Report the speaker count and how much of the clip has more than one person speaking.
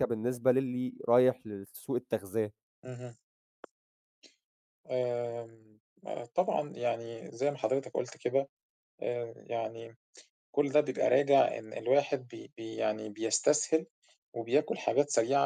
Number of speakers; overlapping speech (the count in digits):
2, no overlap